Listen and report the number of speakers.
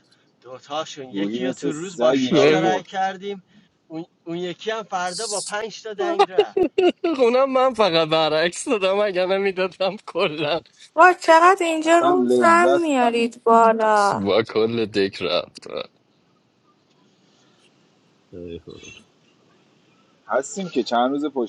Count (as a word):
four